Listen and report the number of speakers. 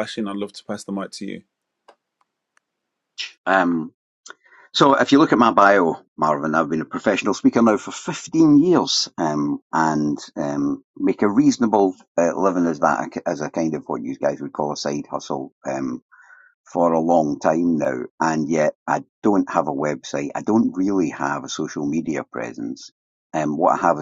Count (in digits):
2